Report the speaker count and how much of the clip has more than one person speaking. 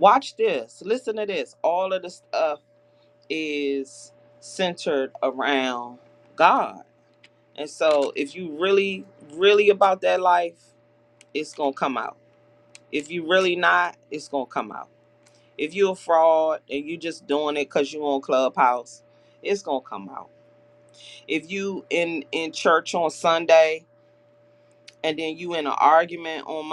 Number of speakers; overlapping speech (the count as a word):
one, no overlap